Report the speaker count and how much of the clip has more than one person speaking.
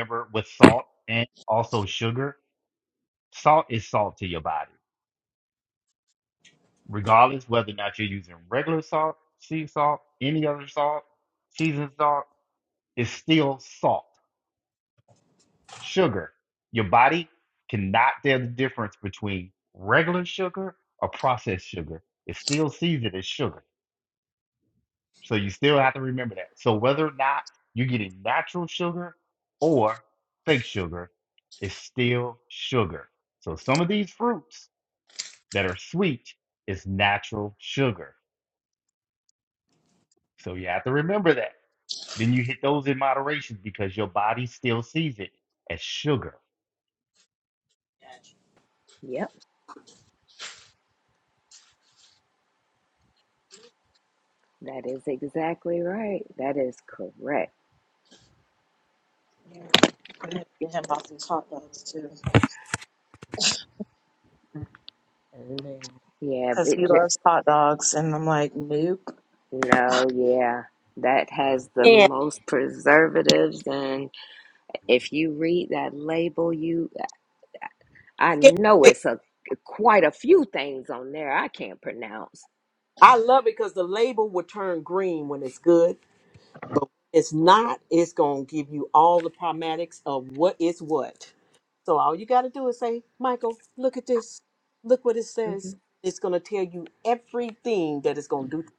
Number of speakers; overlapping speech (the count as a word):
four, about 1%